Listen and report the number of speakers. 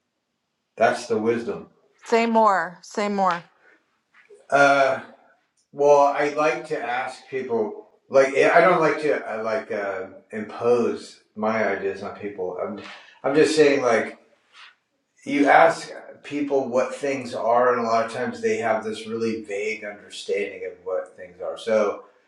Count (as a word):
two